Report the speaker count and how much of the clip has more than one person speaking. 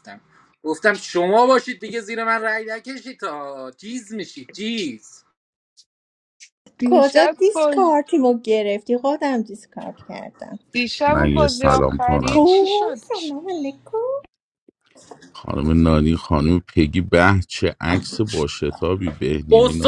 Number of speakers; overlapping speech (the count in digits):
4, about 16%